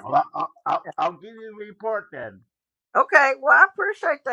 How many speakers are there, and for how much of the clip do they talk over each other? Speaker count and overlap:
2, no overlap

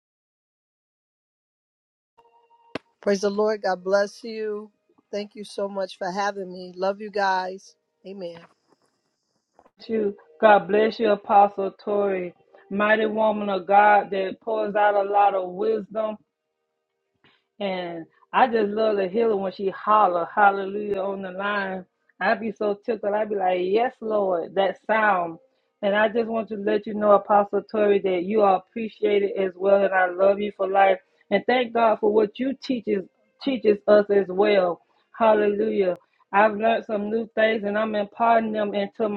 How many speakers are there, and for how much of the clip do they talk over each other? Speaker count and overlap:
2, no overlap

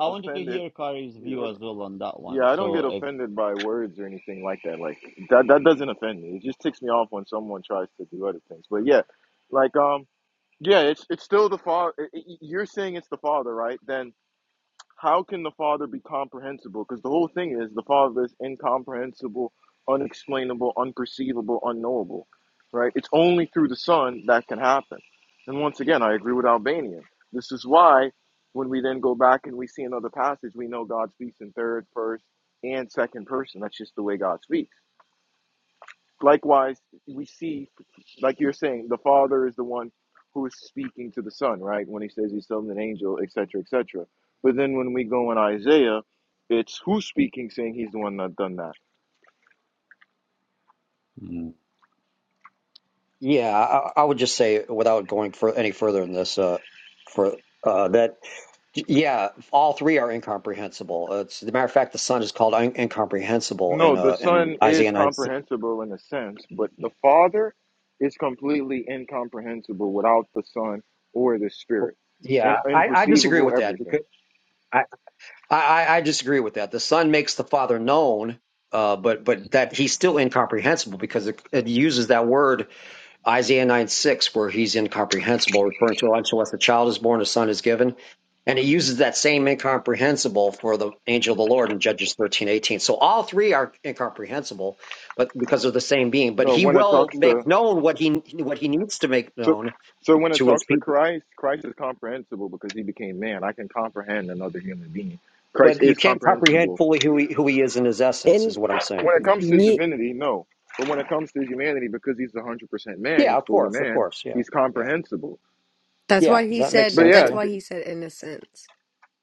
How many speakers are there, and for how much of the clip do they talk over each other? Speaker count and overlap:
4, about 9%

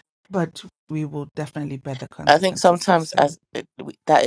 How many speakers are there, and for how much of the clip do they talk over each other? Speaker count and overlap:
2, about 25%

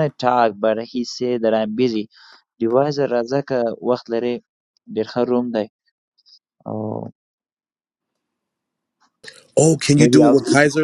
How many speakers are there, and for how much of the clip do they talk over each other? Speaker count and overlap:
2, about 6%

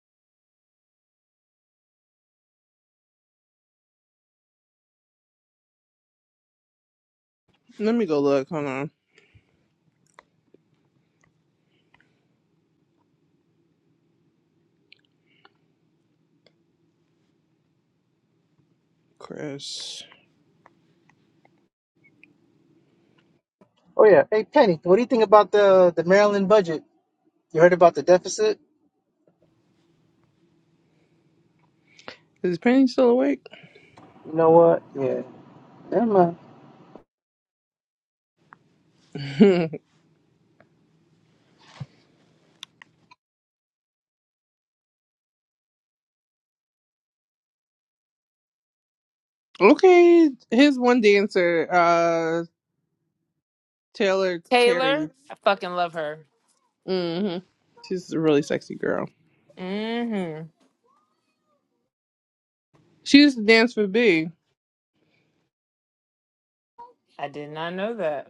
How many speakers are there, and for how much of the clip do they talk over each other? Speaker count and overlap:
3, about 1%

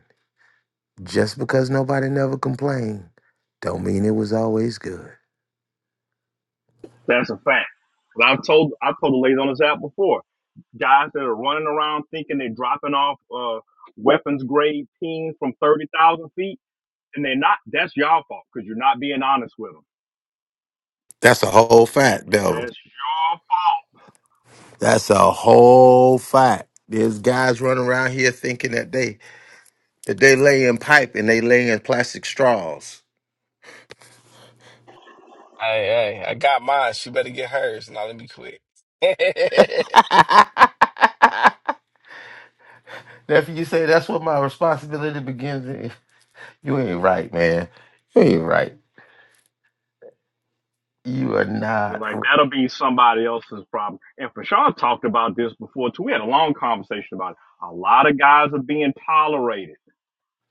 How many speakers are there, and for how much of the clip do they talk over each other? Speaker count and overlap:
3, about 1%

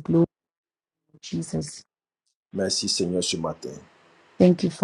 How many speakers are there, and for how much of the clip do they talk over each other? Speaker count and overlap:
2, no overlap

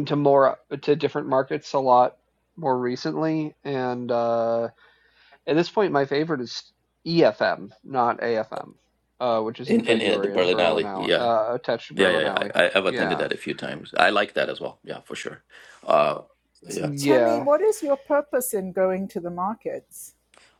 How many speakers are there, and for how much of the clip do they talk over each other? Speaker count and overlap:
3, about 15%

